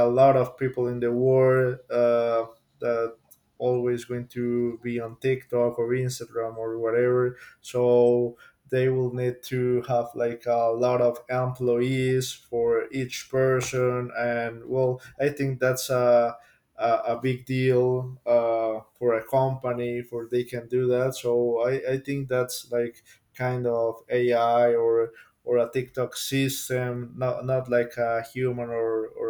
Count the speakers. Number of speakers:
1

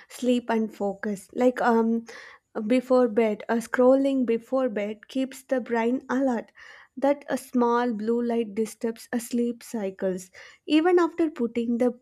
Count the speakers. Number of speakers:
1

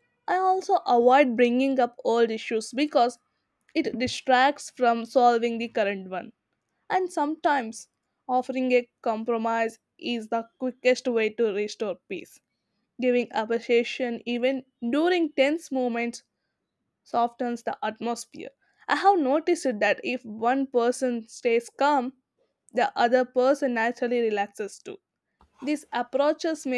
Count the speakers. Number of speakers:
1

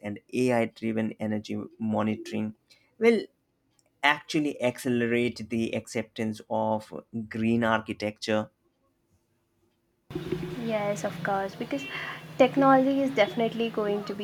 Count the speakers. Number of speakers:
2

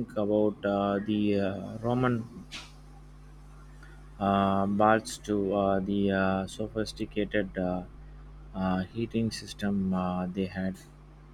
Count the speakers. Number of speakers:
1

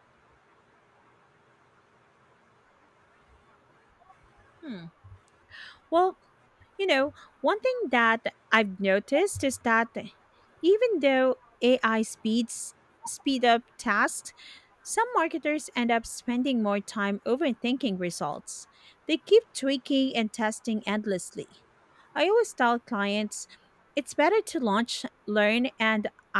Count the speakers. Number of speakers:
1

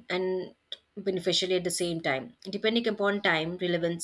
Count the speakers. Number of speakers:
1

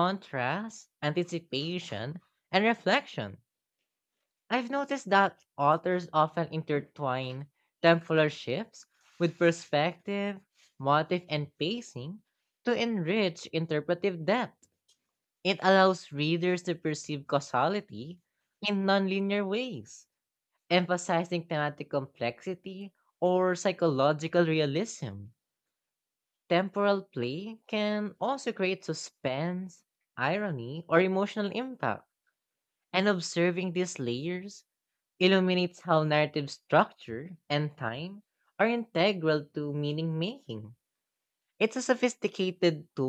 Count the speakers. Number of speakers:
1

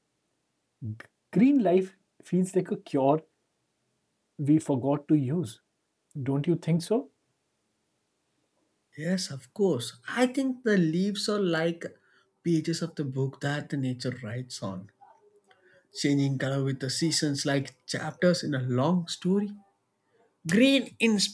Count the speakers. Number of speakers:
2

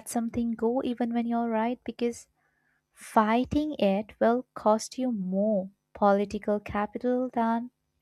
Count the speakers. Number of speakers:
1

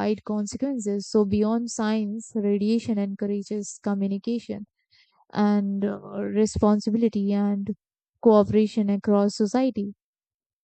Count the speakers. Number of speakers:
1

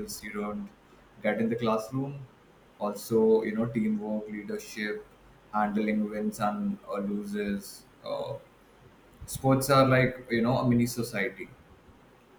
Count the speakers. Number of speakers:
1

